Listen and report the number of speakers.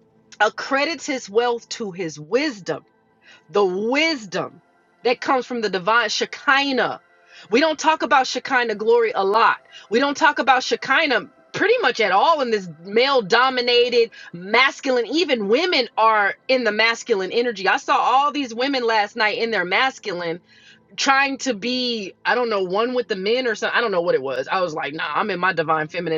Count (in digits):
1